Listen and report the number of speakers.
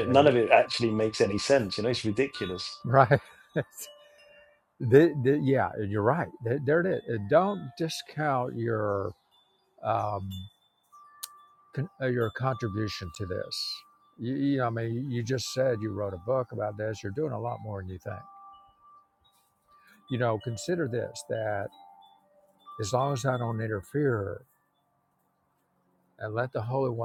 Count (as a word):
two